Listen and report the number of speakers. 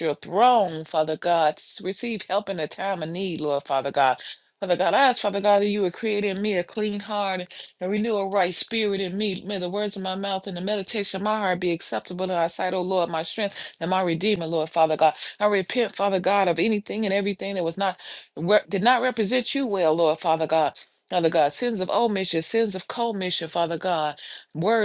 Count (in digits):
1